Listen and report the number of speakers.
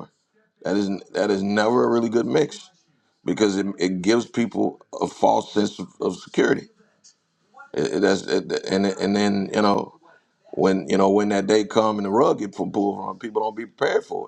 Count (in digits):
1